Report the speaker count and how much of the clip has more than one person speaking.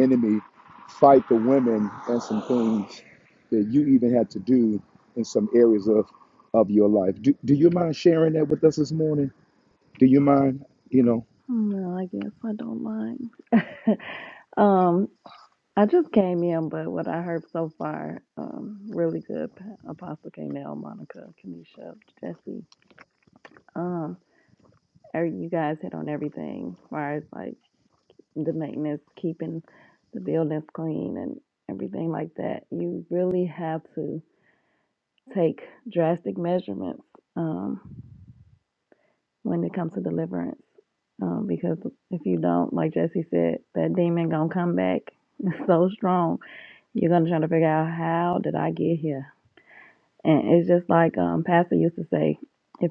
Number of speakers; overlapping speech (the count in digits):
2, no overlap